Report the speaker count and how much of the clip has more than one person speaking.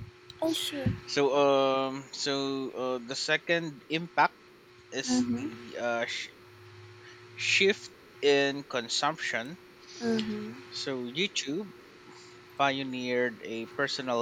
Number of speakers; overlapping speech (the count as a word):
two, about 3%